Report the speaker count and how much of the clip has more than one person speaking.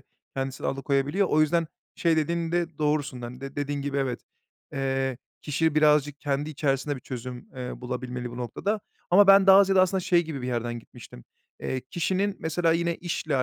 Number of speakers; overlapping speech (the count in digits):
1, no overlap